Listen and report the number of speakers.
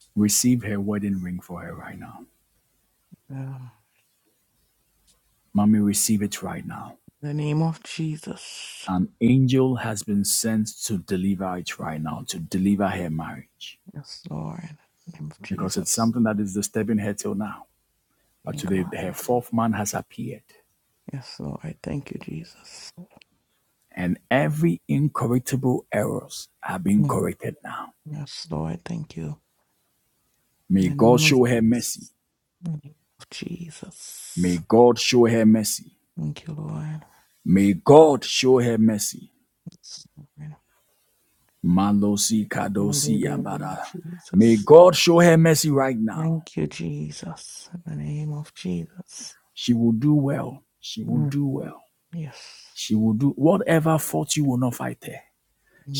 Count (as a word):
two